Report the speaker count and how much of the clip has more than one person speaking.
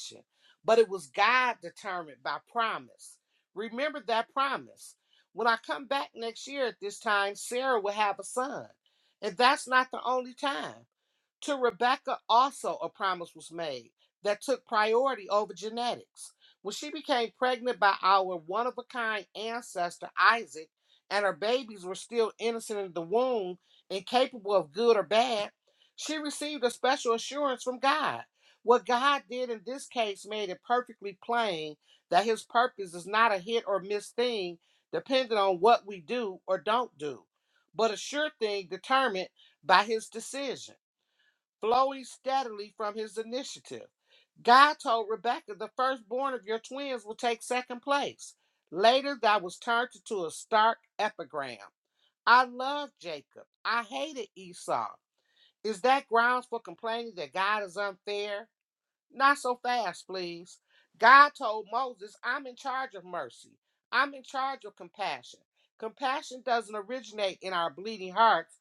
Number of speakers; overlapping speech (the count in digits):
1, no overlap